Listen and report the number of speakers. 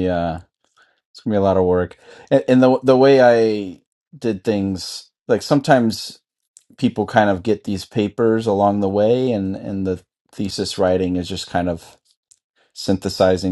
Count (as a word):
one